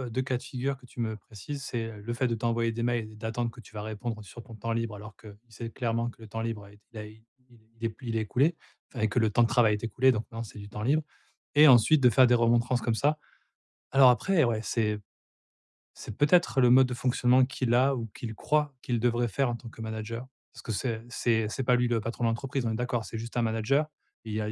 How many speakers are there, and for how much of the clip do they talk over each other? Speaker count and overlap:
1, no overlap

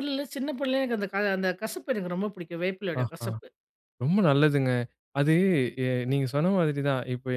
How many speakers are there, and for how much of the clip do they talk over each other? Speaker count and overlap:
2, about 5%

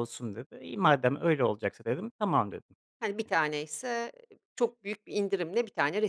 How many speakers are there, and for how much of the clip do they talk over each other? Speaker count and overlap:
2, no overlap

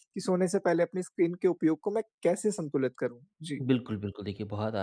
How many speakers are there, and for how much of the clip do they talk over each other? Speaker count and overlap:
2, under 1%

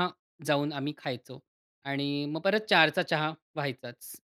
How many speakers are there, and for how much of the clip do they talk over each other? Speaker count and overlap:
1, no overlap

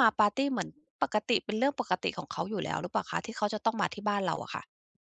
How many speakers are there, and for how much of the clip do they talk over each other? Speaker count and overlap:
1, no overlap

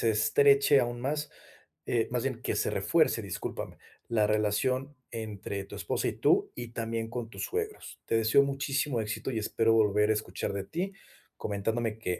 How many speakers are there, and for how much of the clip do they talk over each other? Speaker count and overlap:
1, no overlap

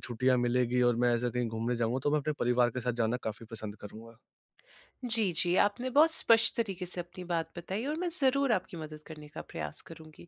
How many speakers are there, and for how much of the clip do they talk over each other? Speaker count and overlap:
2, no overlap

